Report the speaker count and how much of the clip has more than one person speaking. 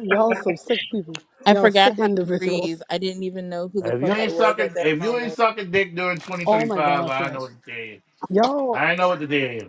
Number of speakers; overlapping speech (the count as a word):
three, about 38%